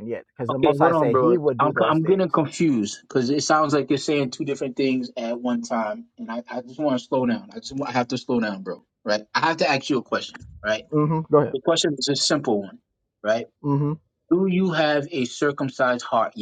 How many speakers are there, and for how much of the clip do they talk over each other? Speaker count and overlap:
2, about 10%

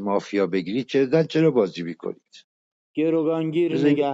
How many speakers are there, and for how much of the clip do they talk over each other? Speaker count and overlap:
2, about 11%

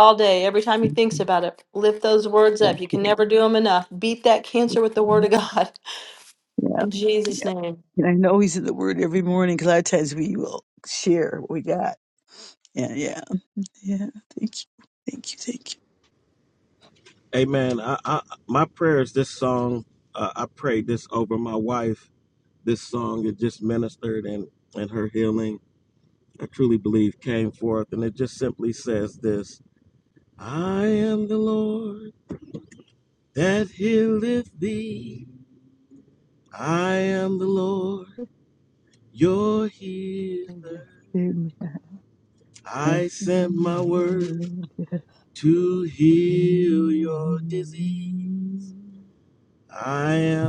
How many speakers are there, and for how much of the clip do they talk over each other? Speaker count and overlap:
3, about 2%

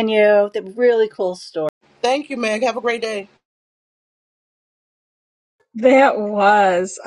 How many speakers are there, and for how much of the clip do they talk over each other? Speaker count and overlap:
3, no overlap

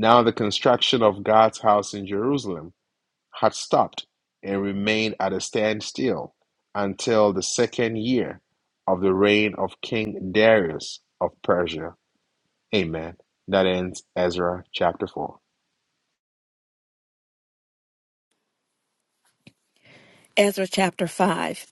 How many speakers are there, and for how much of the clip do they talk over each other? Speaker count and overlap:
2, no overlap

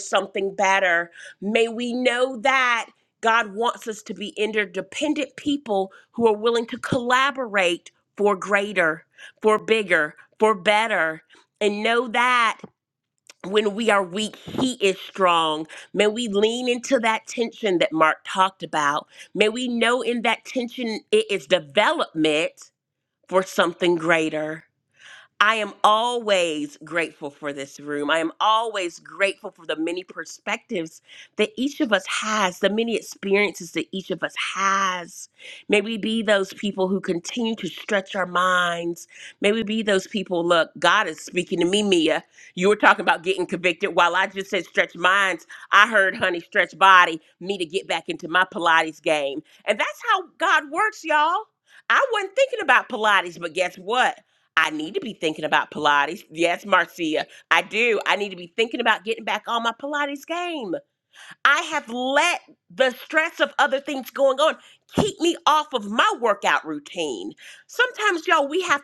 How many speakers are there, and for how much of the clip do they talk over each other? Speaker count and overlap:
1, no overlap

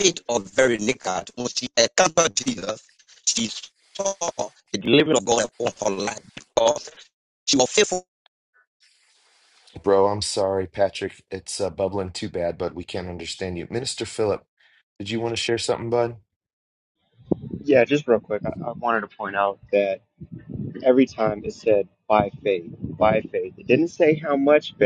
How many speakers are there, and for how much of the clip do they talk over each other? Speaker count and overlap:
3, no overlap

